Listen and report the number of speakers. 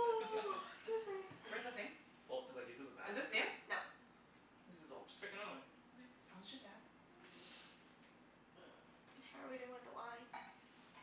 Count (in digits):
4